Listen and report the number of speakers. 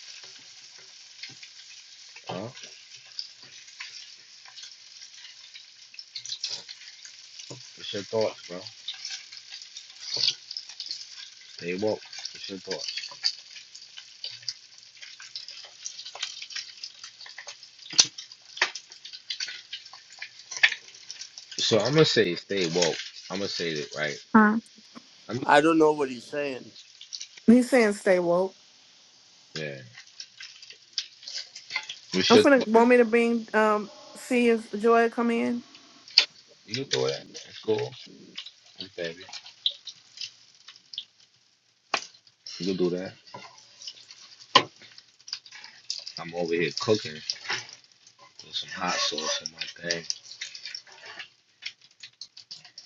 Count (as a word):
three